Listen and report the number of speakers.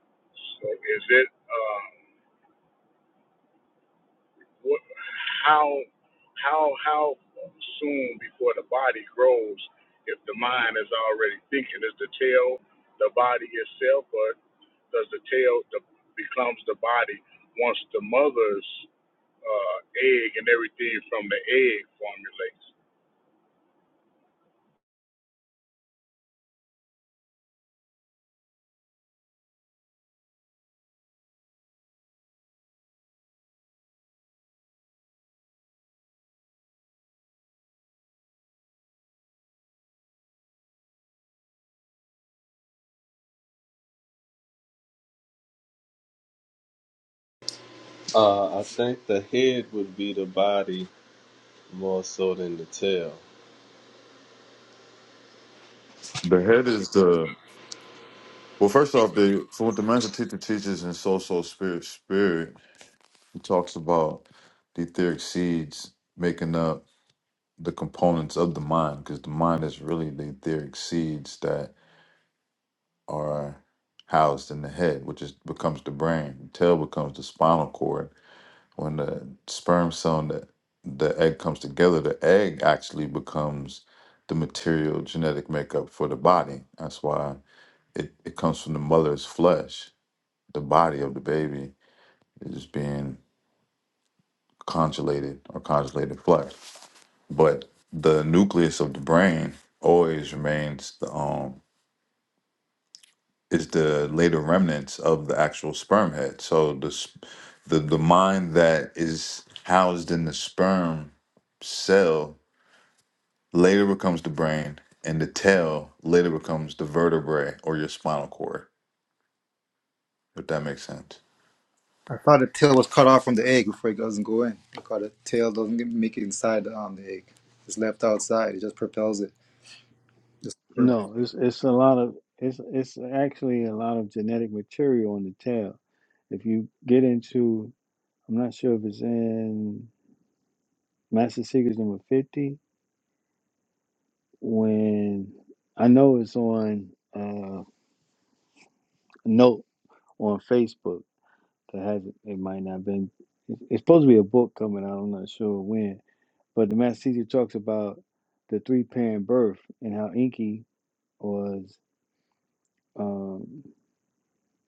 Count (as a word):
five